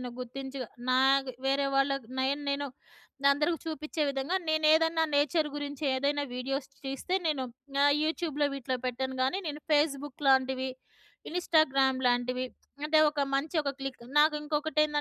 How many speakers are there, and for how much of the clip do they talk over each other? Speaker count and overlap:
one, no overlap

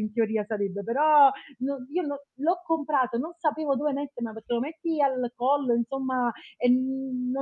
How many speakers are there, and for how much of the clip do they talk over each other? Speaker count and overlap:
one, no overlap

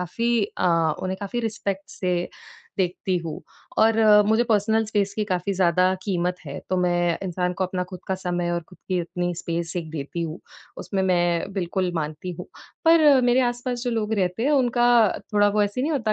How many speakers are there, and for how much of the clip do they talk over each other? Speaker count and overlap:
one, no overlap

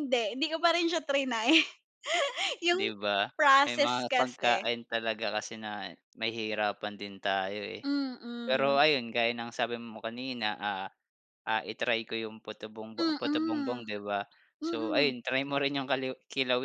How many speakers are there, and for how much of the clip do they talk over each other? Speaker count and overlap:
two, about 17%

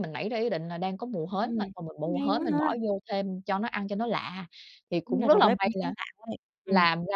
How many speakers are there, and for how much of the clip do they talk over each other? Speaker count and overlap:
two, about 27%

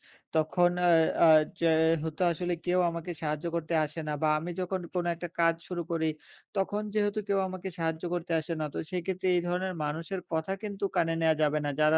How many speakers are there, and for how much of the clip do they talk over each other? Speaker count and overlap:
one, no overlap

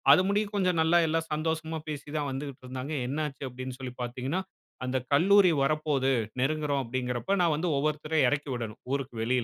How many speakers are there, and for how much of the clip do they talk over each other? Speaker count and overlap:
one, no overlap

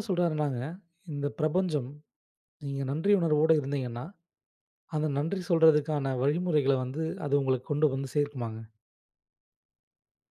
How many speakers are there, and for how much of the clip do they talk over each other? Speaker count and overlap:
one, no overlap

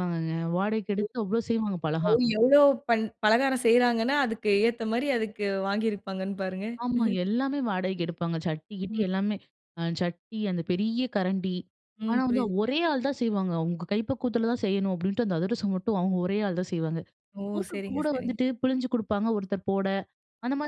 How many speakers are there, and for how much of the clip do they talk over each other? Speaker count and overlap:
two, about 7%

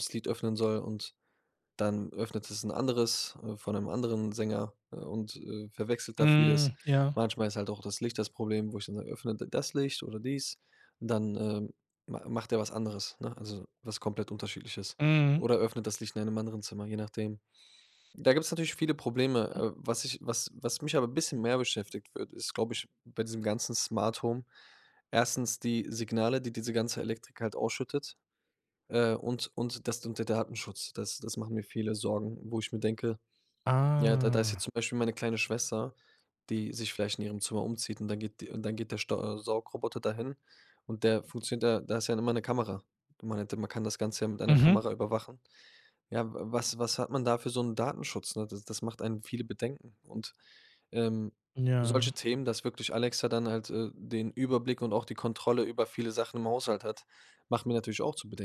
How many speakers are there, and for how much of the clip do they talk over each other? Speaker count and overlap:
two, about 3%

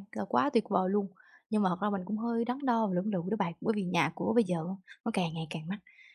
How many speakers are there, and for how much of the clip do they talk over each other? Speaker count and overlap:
one, no overlap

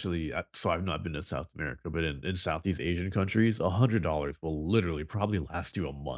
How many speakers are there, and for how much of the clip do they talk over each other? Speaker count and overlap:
one, no overlap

